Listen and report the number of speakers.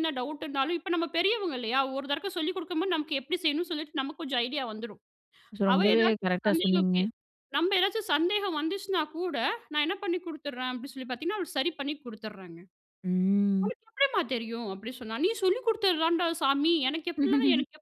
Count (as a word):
two